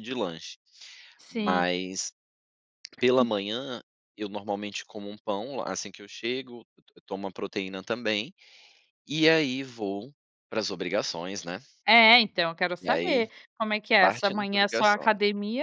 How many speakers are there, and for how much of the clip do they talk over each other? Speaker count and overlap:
two, about 12%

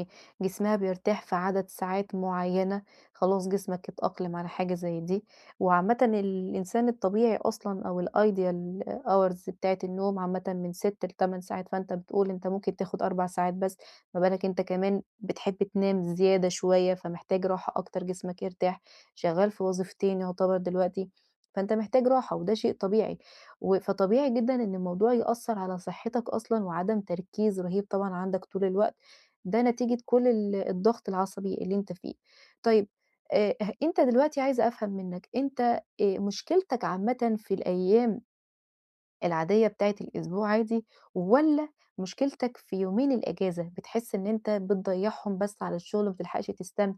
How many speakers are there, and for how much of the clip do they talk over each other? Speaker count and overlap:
one, no overlap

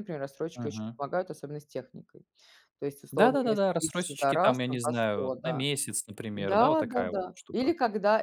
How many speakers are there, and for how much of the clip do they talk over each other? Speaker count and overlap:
two, about 51%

